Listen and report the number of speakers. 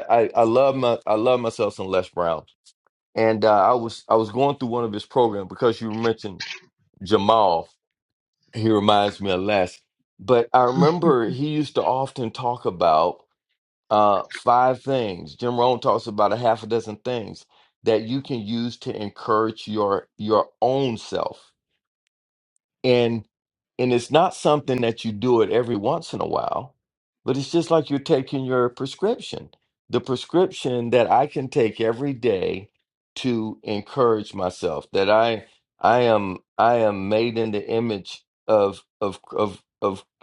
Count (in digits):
1